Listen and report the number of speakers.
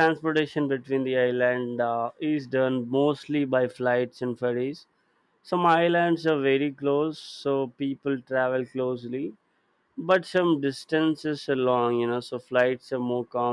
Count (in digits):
1